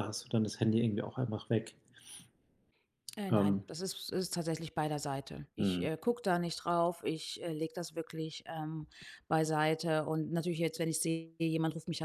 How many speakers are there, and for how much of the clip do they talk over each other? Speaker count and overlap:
2, about 5%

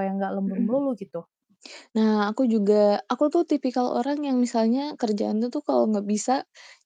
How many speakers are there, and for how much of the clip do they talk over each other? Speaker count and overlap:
2, about 5%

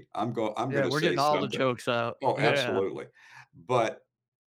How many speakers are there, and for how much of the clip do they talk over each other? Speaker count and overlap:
2, about 34%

